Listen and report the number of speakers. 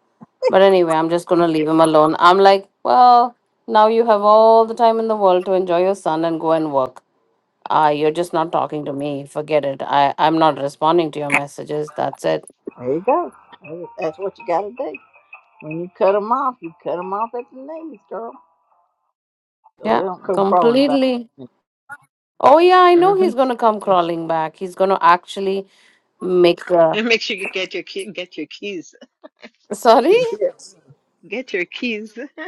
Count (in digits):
3